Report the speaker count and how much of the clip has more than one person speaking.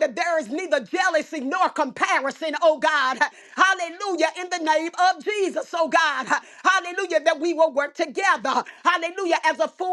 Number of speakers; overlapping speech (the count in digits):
1, no overlap